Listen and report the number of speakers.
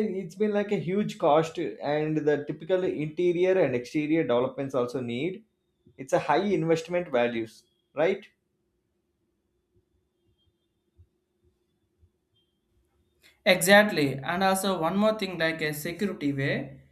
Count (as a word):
two